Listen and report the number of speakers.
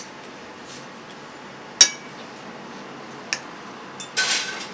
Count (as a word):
zero